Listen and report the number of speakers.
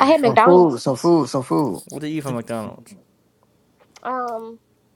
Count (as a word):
three